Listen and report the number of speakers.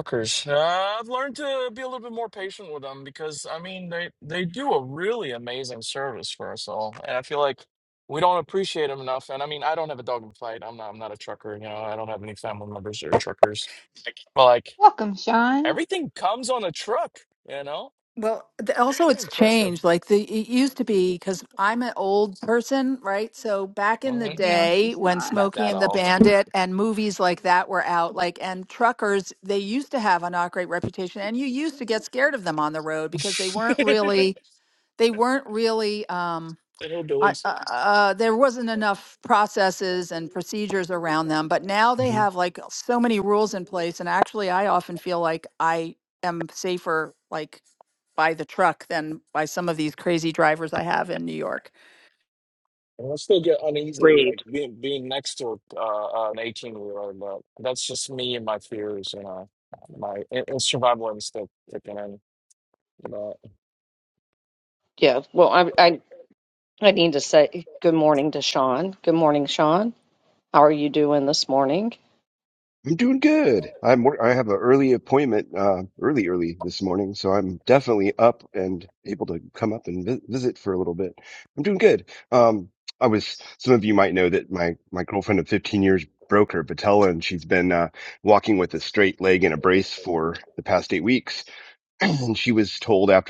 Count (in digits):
5